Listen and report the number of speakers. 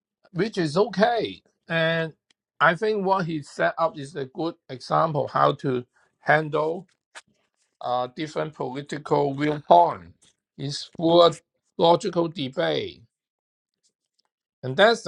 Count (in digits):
1